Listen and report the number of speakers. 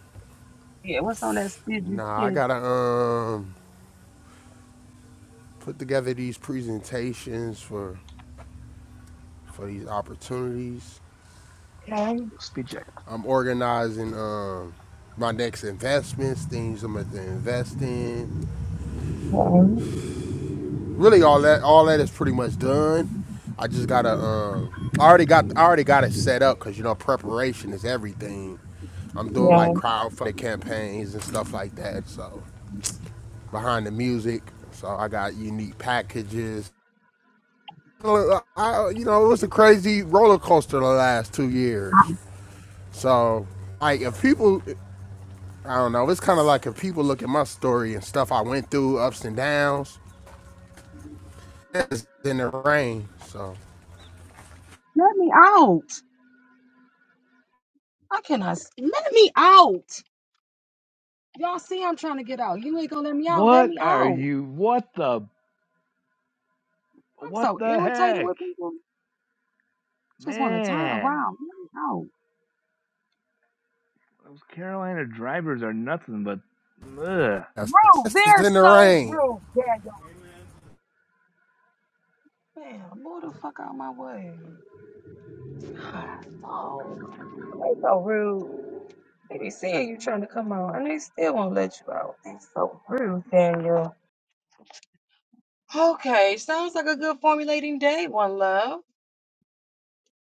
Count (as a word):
three